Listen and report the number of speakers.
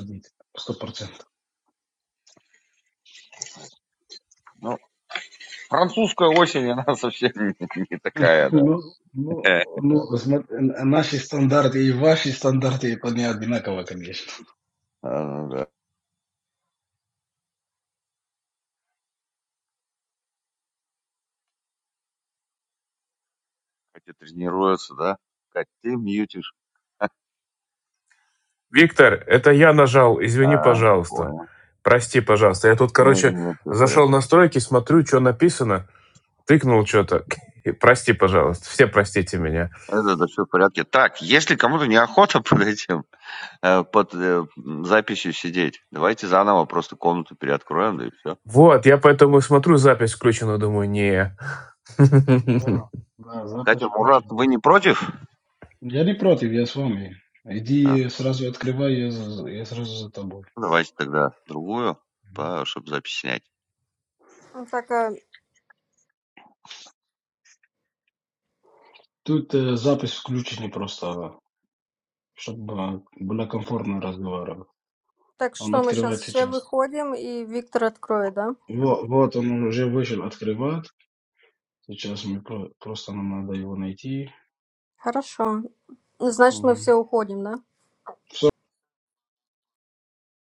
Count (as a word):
four